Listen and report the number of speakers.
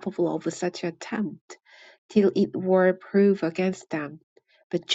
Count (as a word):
one